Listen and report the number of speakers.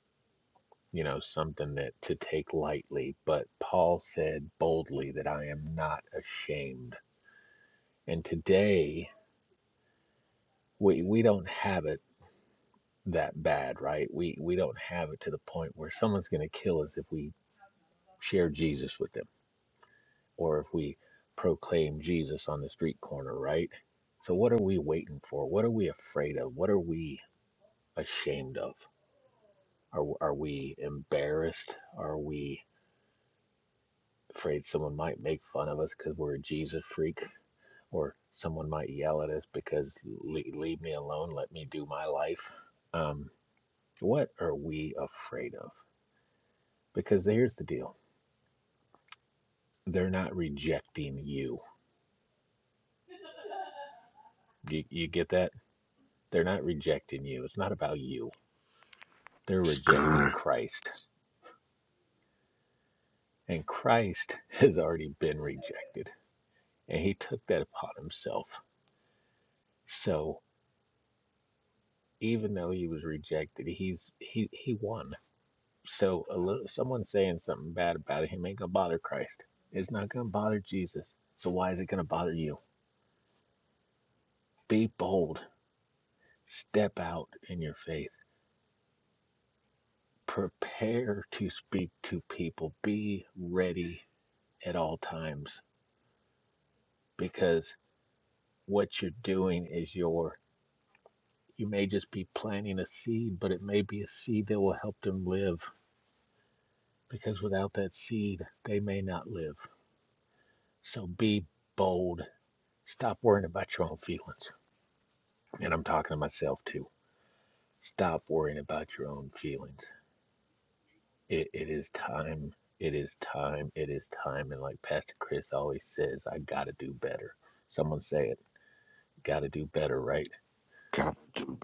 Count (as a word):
two